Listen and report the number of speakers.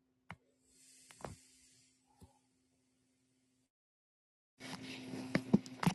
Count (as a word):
zero